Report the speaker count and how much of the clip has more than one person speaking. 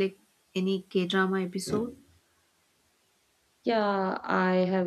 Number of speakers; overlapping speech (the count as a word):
two, no overlap